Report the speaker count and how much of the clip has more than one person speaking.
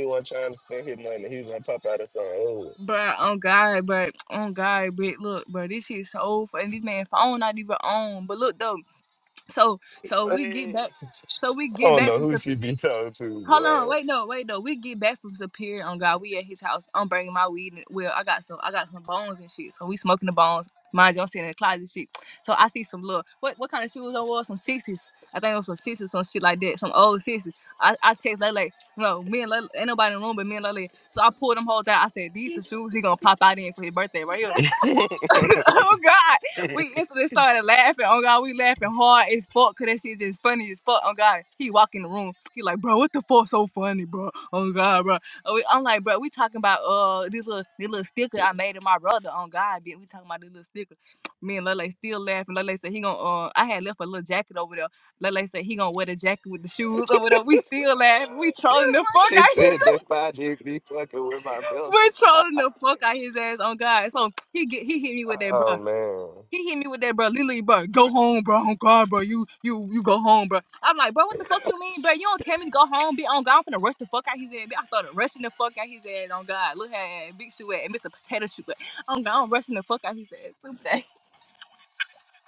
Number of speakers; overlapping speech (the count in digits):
2, about 4%